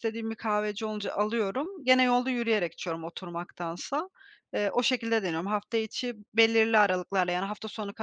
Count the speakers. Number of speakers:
one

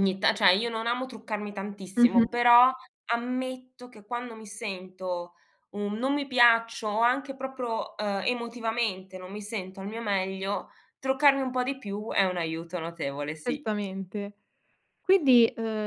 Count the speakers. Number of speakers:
two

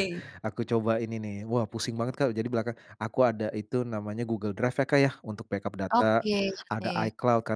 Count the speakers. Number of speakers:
two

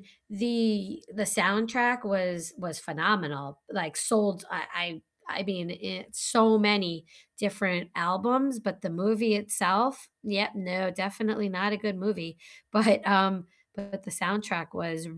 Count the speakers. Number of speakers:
one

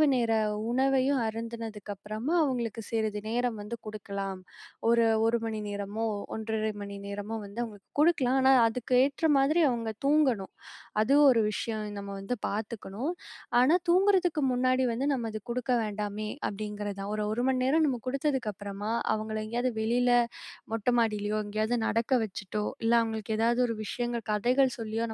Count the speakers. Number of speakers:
one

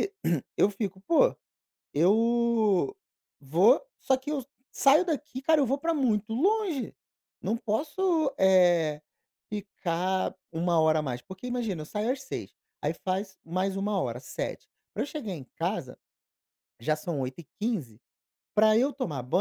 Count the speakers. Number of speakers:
one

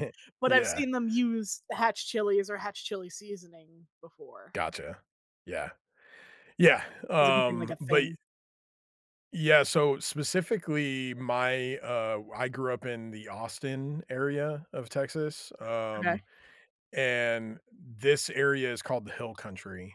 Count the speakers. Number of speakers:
two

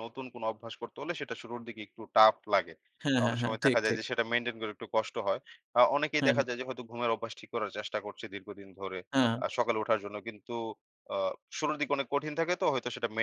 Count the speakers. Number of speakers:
two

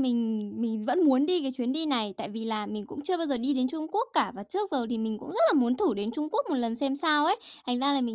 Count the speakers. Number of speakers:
one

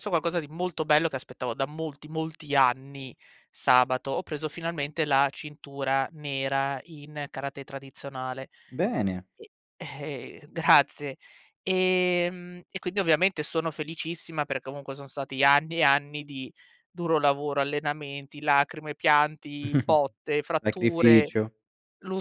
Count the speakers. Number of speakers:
two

